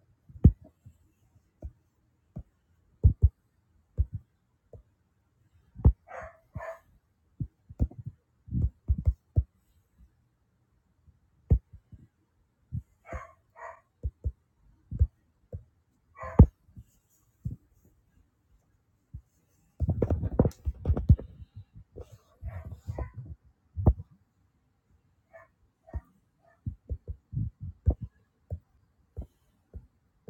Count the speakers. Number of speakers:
0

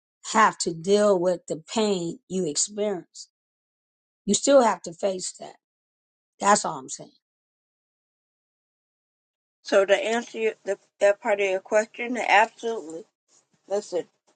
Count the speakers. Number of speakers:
2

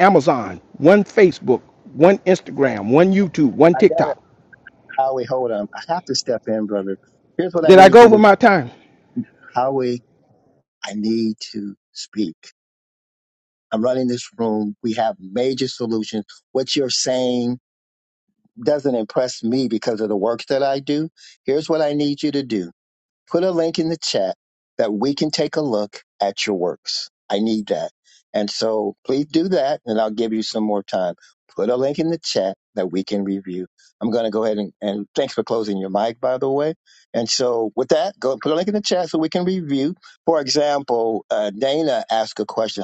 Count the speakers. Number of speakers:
2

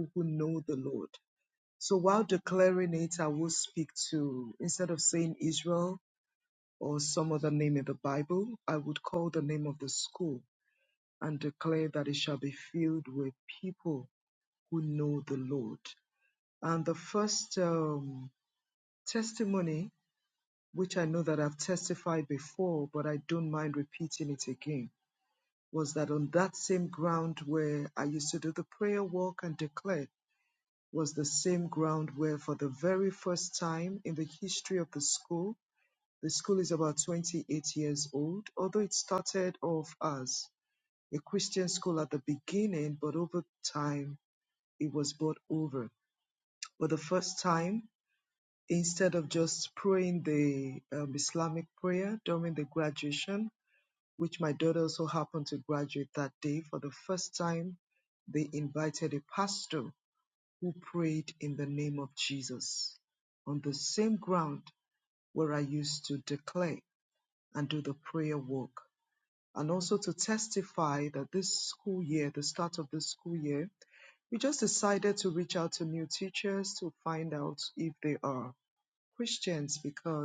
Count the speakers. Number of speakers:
1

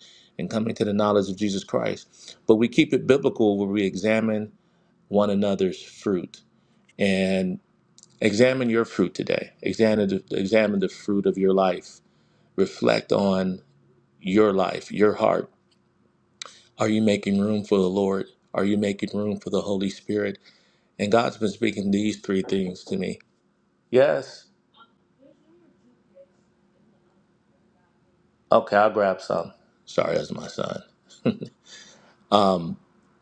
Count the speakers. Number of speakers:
1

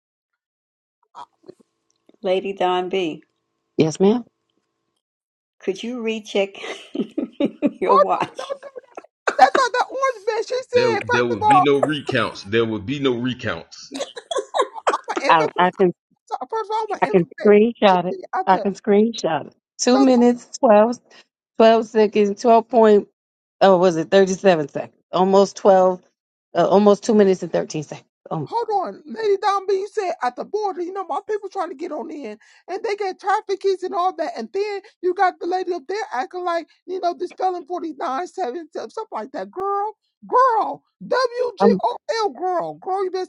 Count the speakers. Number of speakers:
4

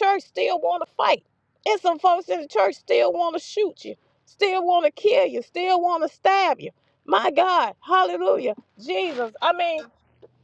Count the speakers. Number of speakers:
1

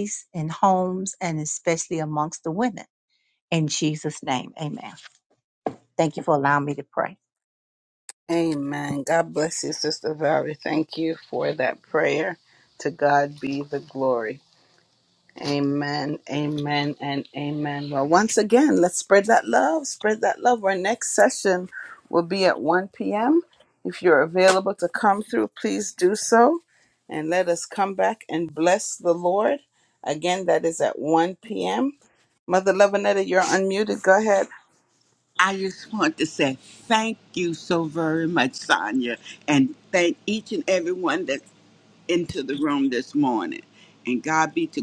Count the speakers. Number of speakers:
3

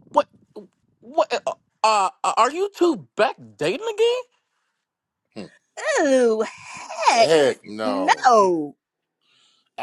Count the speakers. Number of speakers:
3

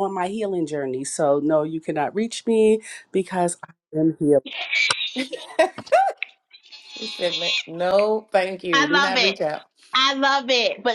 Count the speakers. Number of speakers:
3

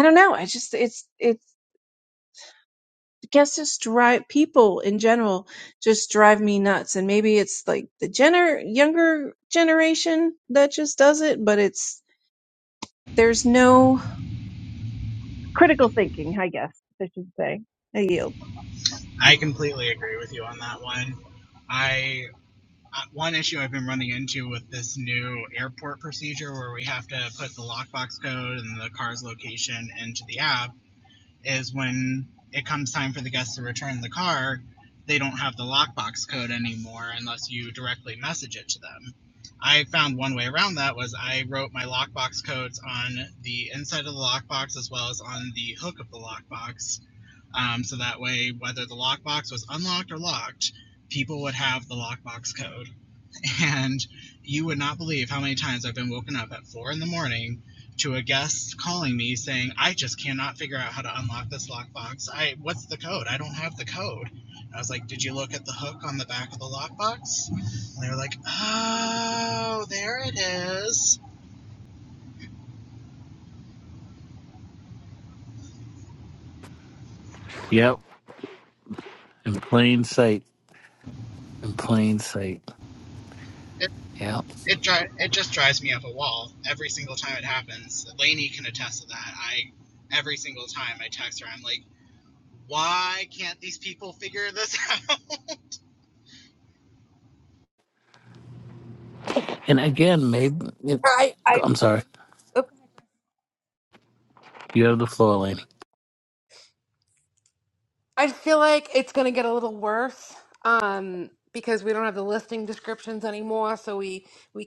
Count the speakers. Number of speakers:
4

